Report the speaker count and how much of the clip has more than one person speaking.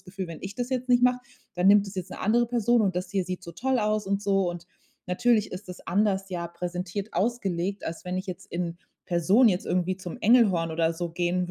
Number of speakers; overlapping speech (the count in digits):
1, no overlap